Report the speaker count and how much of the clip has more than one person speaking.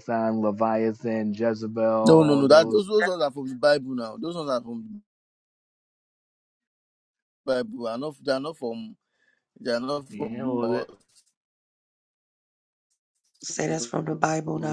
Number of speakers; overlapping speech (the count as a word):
three, about 10%